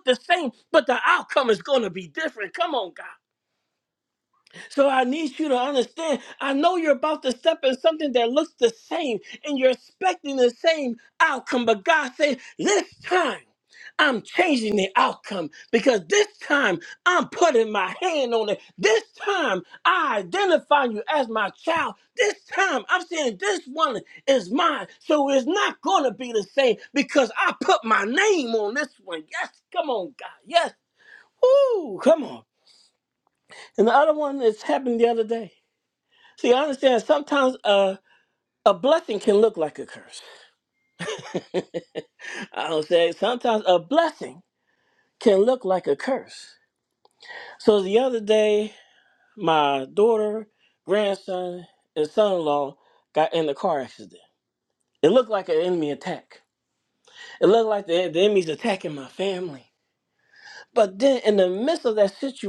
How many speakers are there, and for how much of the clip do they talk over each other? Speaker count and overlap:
one, no overlap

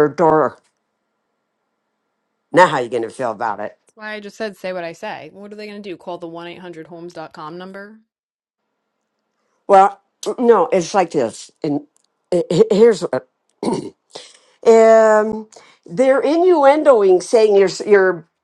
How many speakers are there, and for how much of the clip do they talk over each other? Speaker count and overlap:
two, no overlap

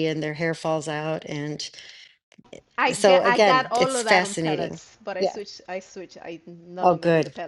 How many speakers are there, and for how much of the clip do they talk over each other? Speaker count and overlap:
two, about 37%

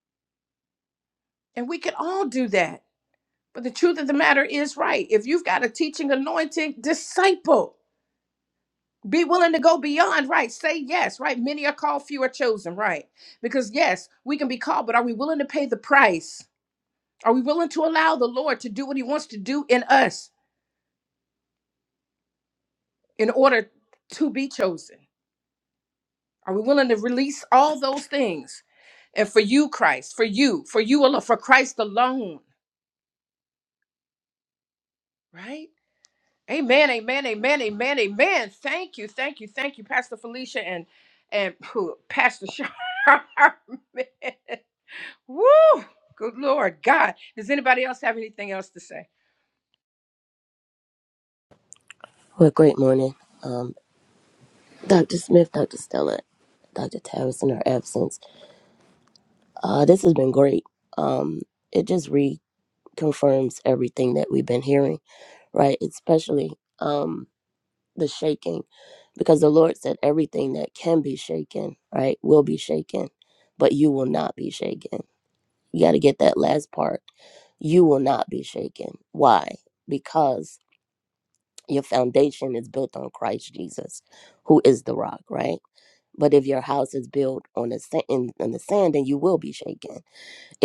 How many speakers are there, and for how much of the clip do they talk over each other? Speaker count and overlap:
two, no overlap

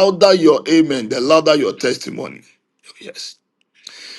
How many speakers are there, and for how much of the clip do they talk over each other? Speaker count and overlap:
one, no overlap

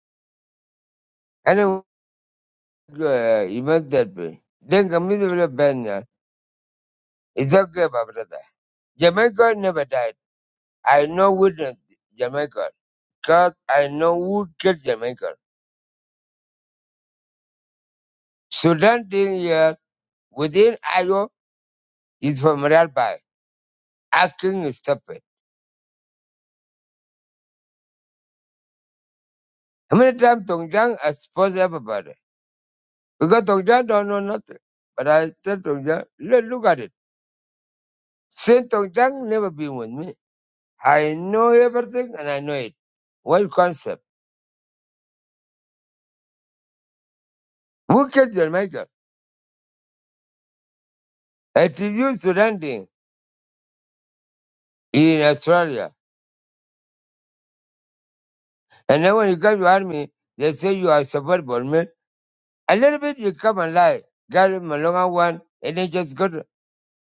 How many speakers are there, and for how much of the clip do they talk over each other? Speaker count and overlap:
one, no overlap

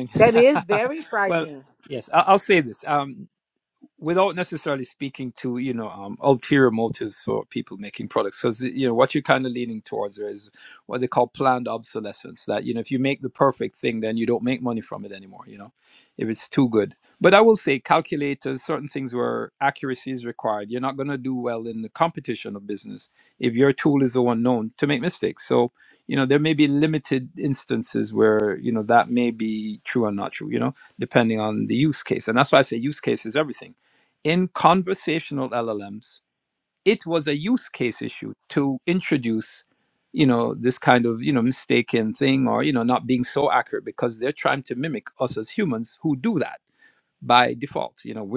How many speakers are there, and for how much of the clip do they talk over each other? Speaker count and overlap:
two, under 1%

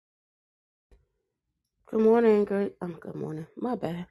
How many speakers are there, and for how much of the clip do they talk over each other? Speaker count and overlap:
one, no overlap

